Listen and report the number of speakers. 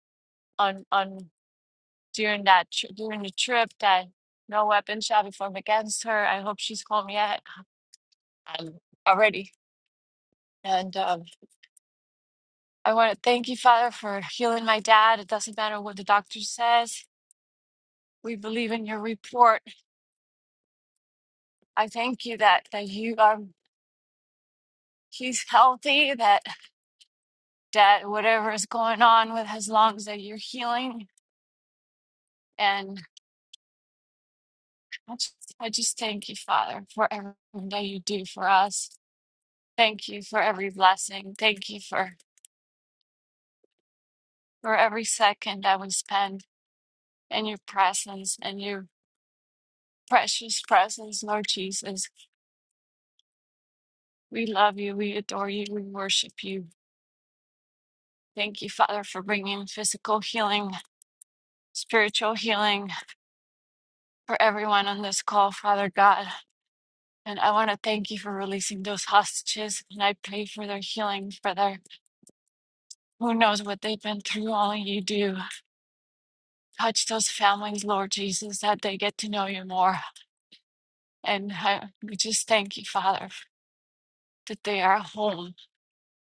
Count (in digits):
1